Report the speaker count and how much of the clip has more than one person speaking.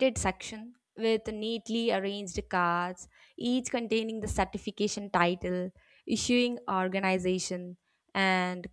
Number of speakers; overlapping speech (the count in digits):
1, no overlap